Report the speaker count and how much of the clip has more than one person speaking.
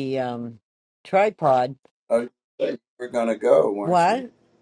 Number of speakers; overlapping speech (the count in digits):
2, about 8%